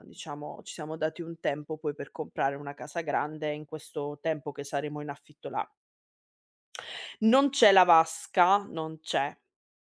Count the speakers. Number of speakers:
one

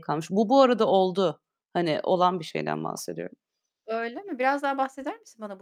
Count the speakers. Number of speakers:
two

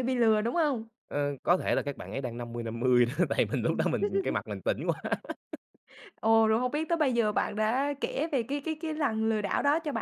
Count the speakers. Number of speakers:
two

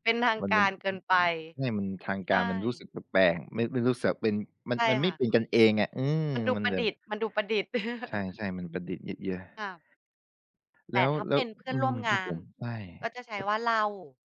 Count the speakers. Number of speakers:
two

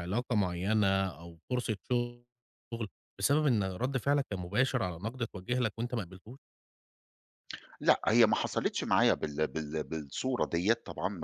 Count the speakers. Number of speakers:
two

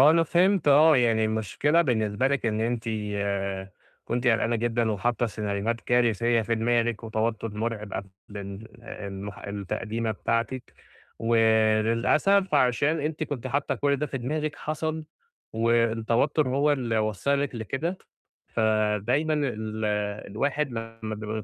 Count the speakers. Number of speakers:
one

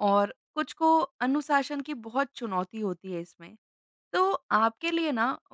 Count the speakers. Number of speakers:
one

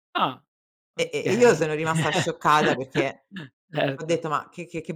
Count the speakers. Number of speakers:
two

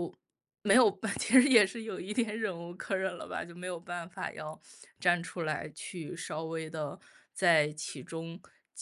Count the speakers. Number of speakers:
one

